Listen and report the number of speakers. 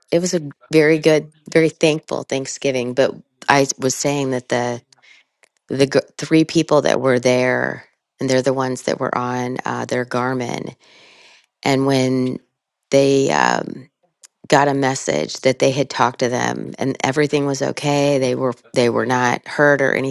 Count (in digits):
1